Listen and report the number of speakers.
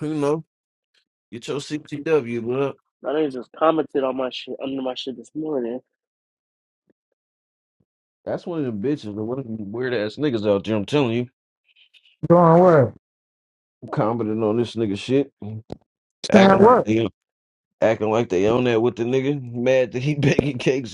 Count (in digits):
3